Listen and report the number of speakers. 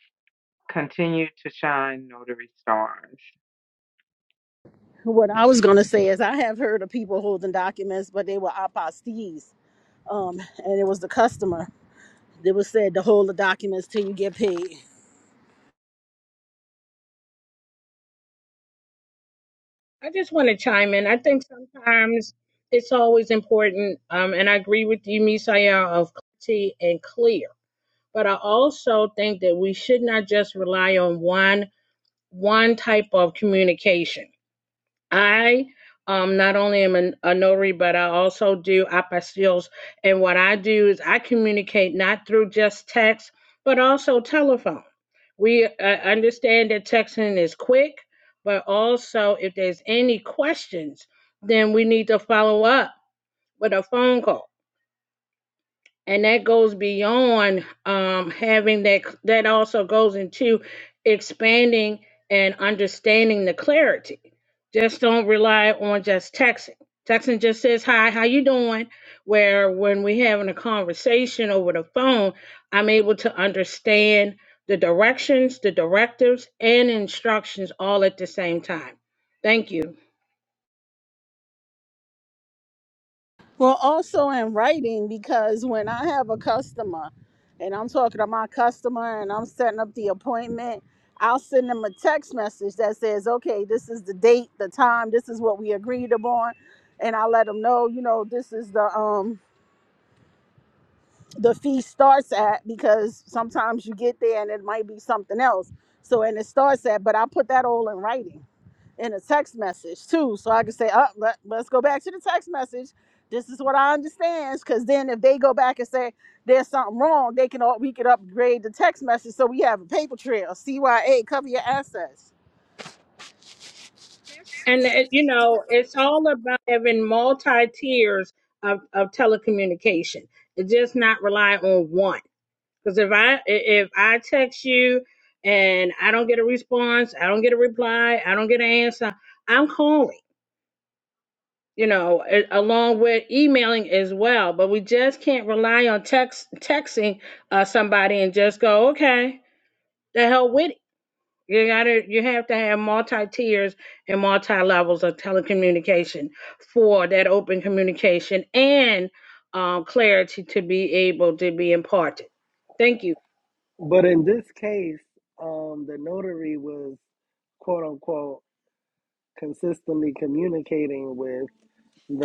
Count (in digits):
4